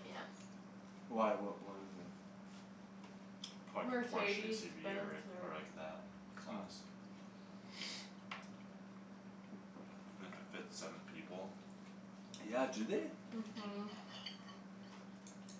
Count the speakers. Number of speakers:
3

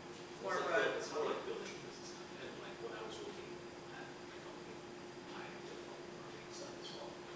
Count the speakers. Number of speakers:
1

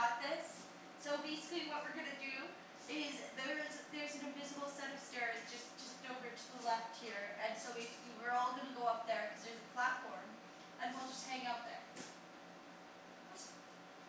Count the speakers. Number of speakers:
1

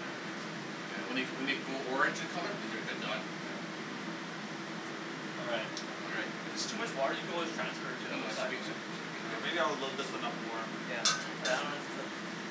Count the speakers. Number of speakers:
3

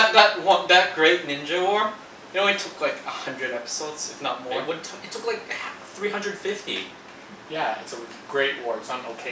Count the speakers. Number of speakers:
3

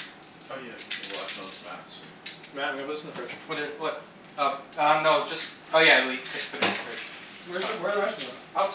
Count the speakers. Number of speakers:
3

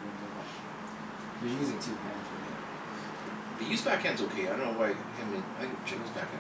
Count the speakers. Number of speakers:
2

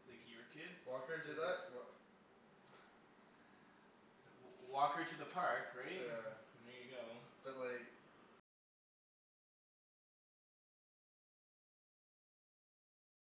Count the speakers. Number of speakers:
2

